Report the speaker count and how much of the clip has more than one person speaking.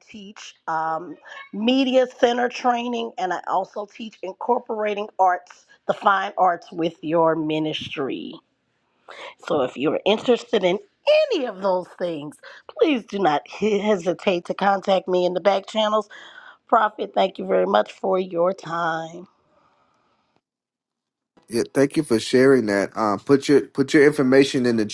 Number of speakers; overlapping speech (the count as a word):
two, no overlap